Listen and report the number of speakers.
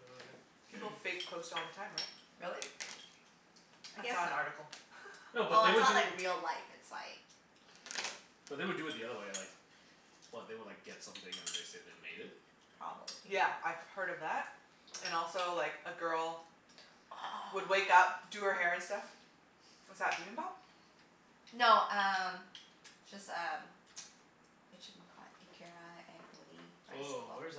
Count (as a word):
four